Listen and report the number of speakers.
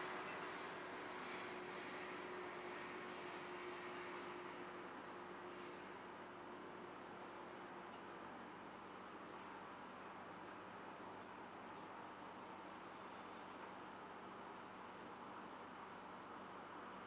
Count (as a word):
zero